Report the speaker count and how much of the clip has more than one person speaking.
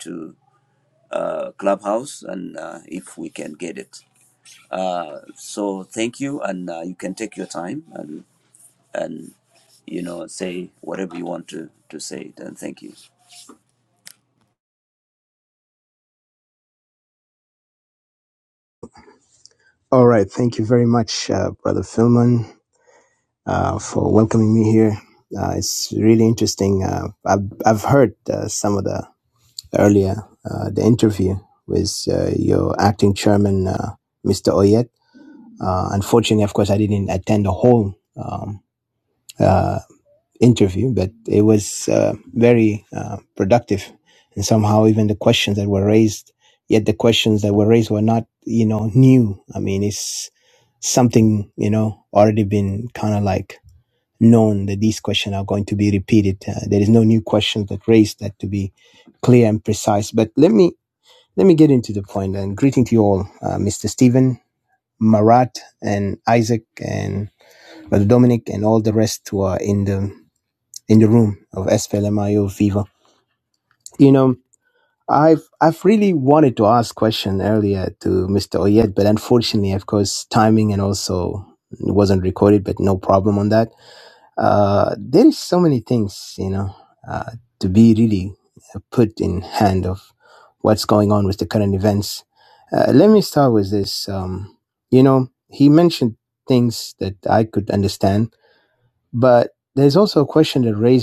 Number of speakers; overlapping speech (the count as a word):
two, no overlap